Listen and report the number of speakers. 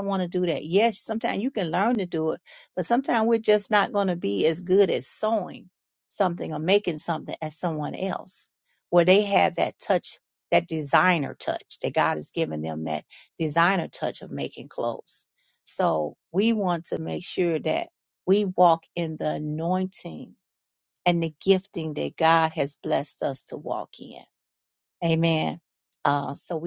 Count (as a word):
one